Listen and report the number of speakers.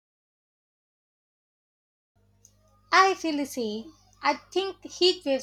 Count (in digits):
1